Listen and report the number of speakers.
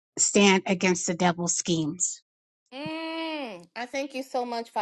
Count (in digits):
2